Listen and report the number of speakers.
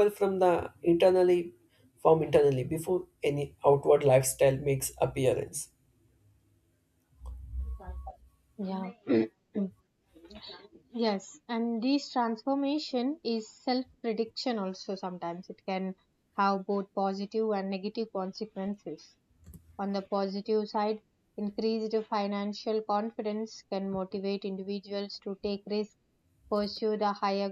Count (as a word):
two